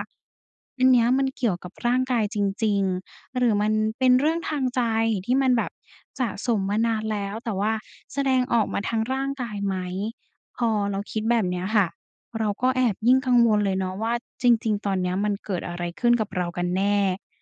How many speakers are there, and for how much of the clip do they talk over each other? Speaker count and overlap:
one, no overlap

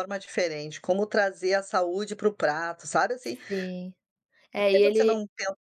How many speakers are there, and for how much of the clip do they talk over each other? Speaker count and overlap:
two, about 11%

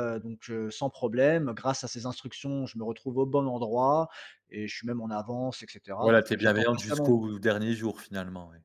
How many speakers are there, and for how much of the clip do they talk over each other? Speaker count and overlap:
two, about 13%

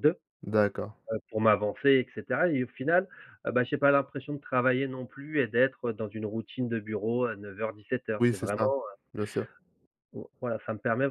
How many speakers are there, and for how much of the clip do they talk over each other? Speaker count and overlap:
two, about 5%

